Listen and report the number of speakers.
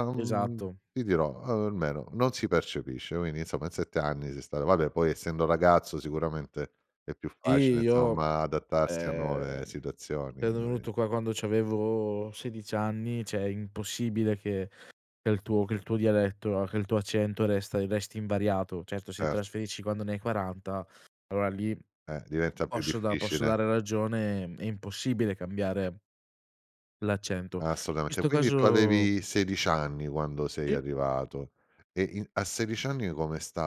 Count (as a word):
two